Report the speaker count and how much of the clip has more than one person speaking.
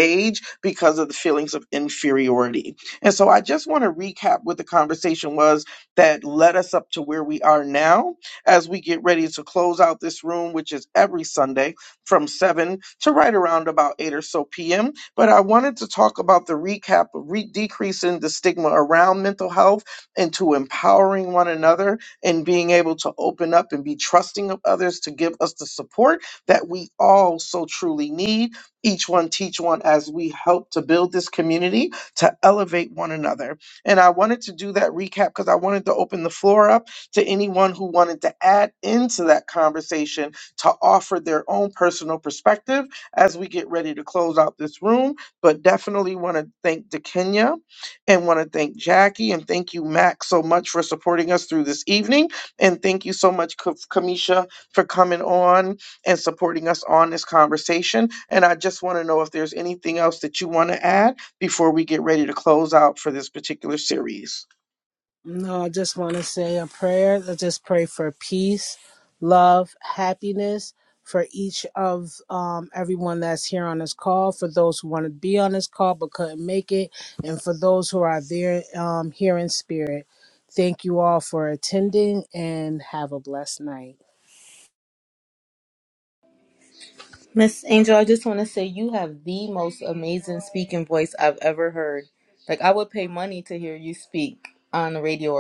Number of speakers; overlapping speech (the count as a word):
three, no overlap